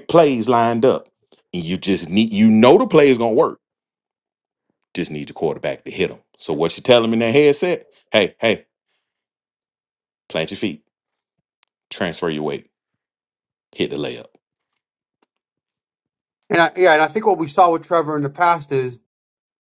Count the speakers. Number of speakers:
two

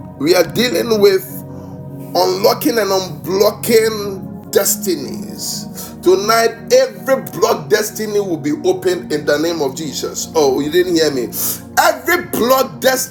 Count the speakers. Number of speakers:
one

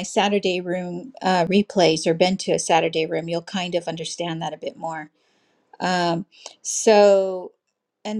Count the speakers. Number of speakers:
one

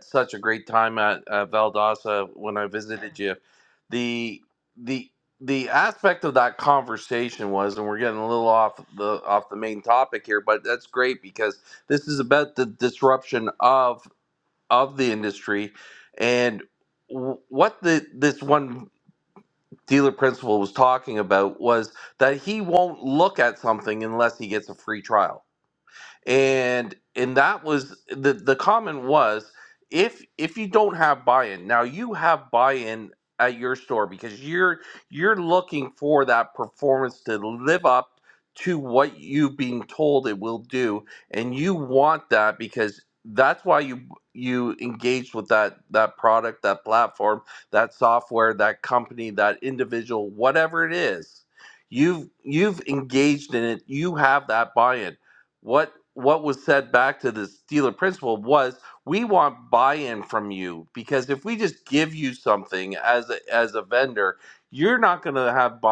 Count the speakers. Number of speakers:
one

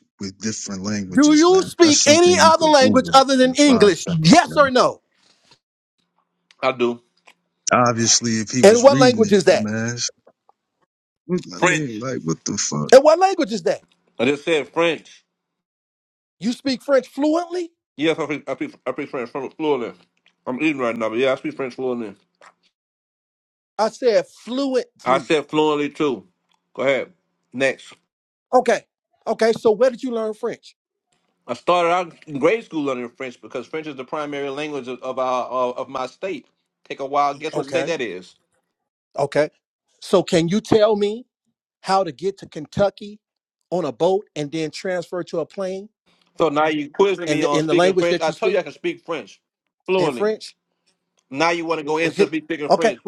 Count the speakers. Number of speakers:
three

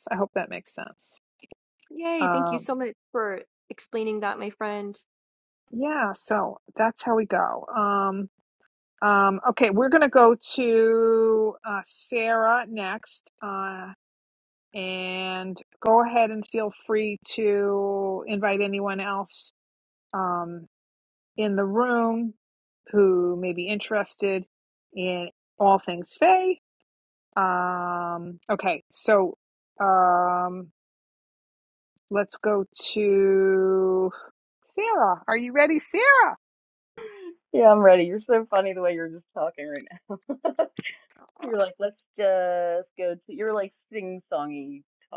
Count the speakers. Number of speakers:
three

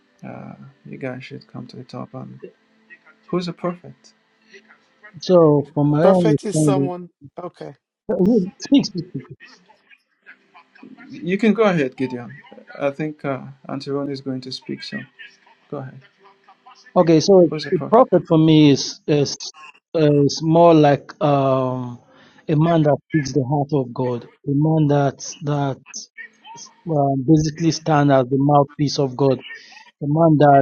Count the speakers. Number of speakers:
three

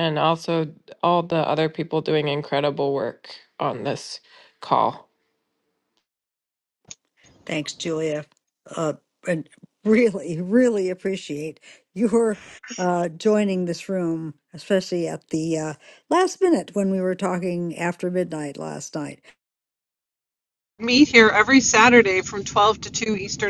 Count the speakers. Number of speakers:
three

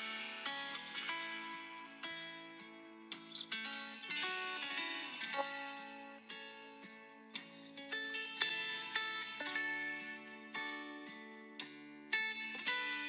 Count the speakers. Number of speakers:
zero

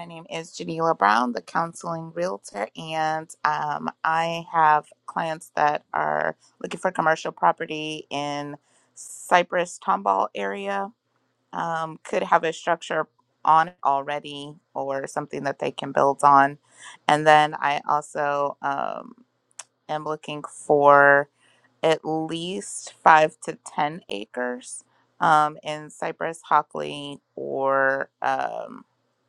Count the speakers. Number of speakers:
one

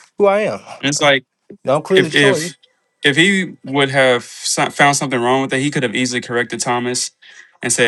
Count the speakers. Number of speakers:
two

